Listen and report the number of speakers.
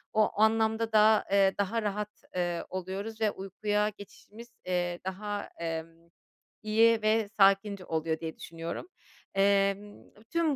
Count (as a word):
one